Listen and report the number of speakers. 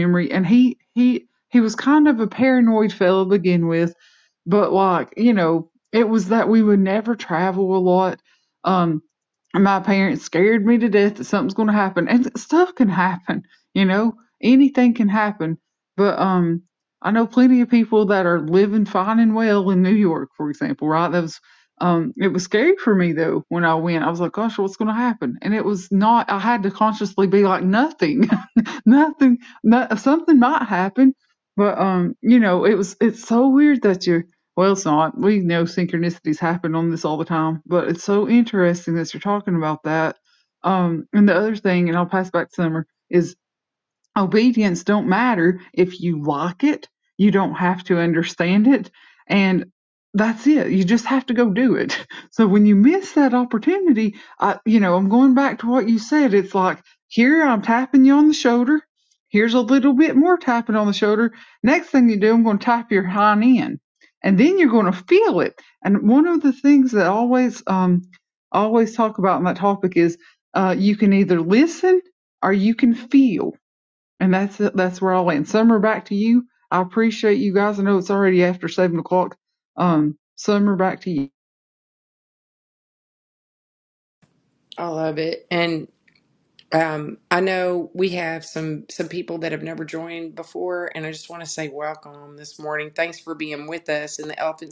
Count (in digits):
2